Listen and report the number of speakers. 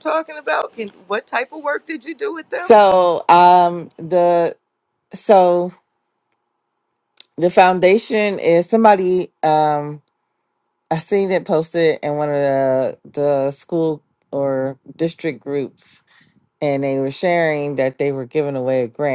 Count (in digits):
2